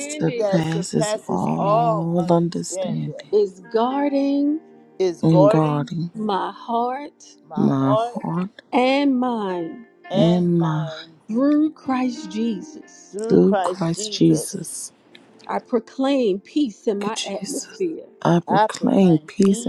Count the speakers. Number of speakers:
3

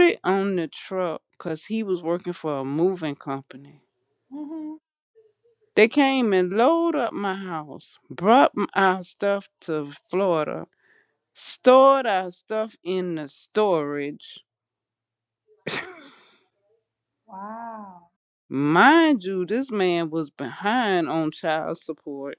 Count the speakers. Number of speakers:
2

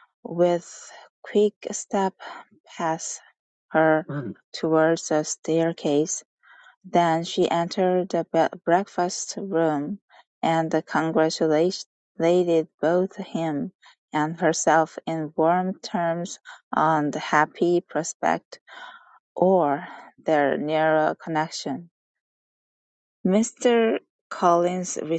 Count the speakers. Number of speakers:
1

